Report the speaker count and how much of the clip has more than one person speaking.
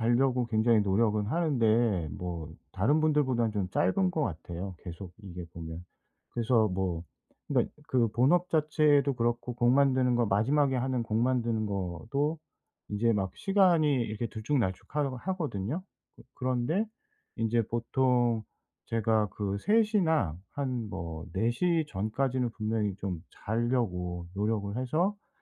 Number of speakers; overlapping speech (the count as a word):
one, no overlap